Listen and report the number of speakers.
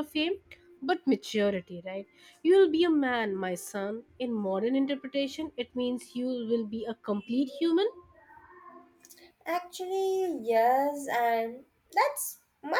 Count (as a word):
two